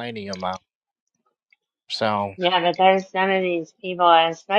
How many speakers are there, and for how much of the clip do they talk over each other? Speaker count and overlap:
2, no overlap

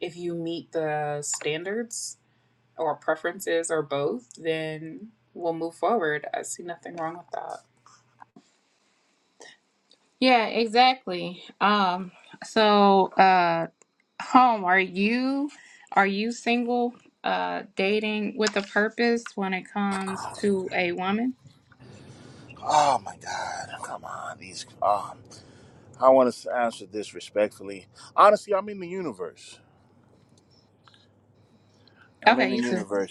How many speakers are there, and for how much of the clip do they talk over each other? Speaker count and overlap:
3, about 2%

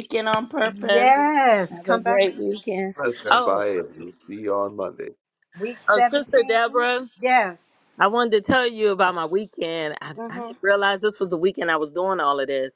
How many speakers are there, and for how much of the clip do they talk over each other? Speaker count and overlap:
4, about 24%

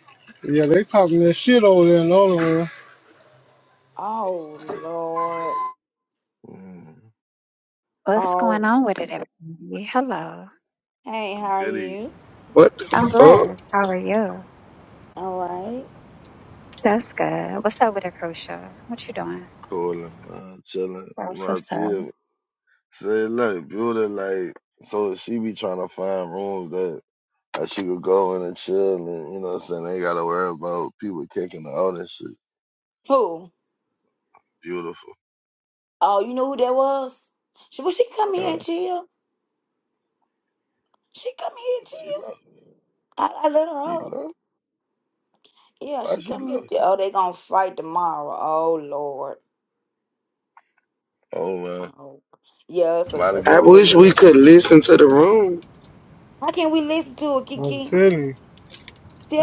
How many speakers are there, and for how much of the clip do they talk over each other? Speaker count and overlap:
5, about 8%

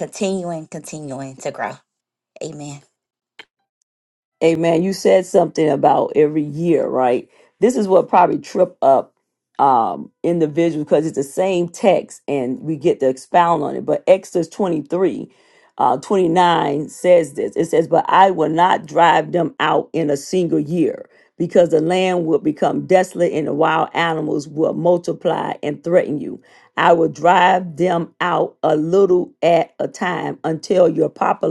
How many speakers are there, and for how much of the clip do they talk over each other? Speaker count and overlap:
2, no overlap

